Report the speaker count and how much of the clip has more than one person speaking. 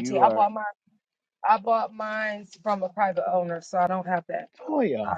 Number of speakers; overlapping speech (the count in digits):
2, about 12%